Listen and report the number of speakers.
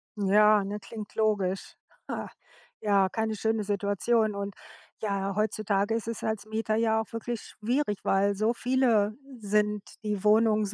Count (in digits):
1